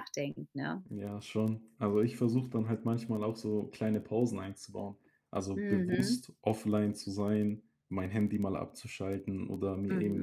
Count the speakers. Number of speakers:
2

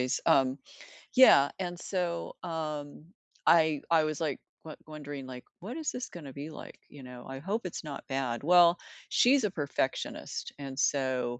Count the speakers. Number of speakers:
1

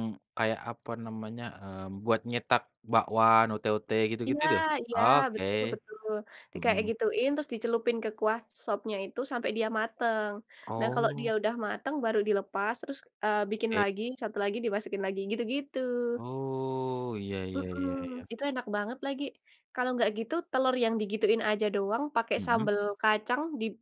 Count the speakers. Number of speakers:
2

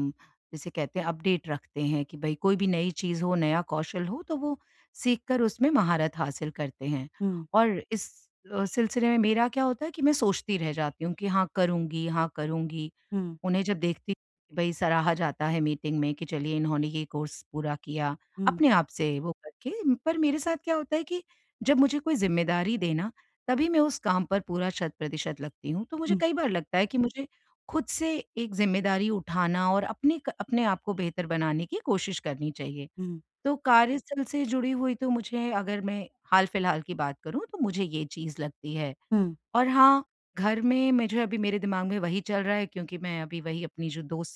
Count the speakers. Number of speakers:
2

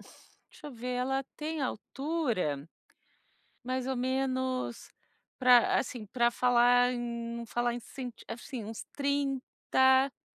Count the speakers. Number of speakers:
1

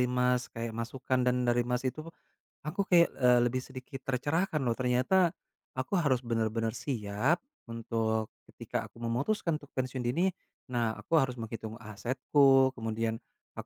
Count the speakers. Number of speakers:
1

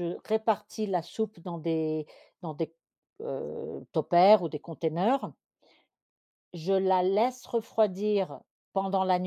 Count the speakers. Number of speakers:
1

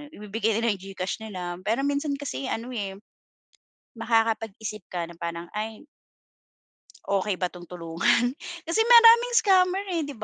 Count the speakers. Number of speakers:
1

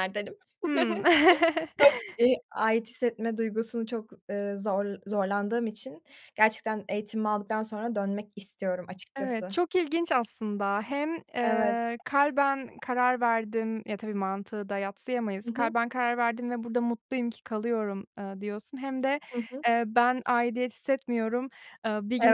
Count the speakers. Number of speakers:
2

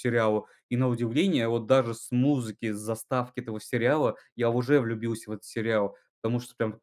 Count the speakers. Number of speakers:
1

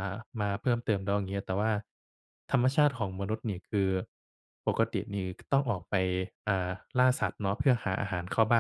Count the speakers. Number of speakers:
1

